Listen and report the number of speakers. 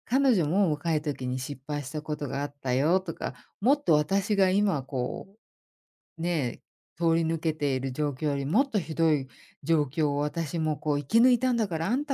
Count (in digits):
1